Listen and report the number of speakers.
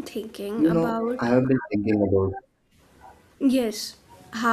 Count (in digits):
2